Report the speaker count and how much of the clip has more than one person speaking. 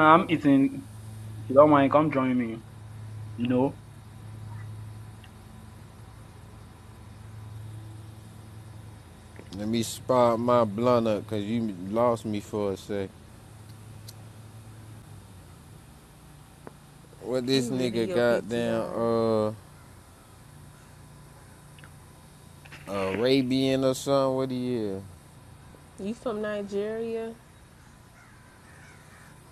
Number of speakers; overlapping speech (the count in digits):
3, about 6%